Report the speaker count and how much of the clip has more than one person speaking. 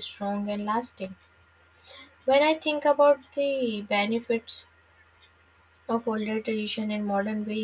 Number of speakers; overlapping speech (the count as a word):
one, no overlap